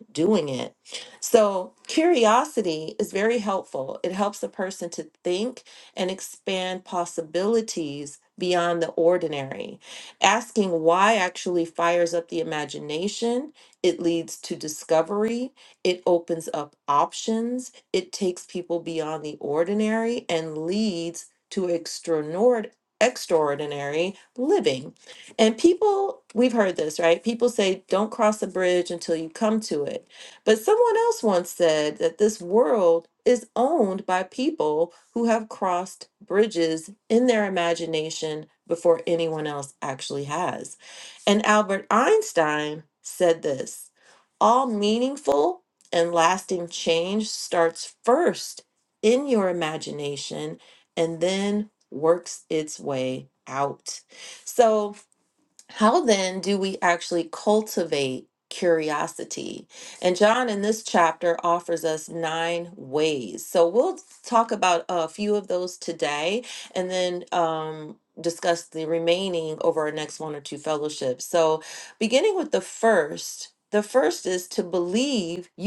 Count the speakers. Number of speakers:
1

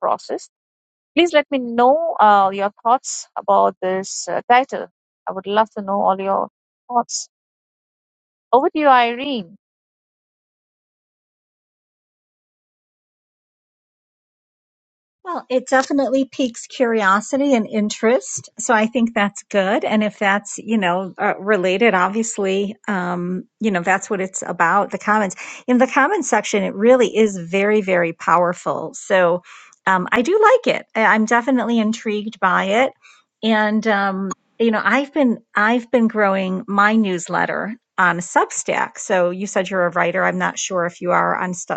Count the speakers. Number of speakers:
2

